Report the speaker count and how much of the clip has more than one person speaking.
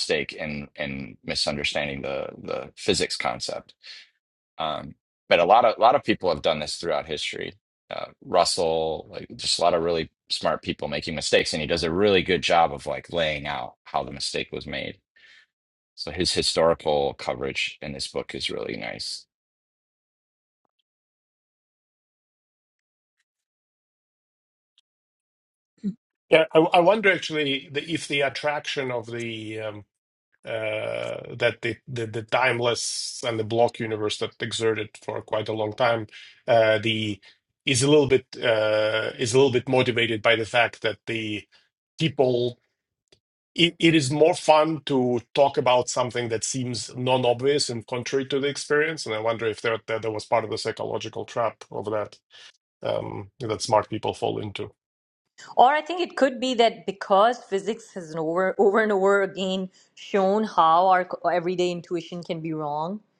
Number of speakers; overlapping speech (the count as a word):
three, no overlap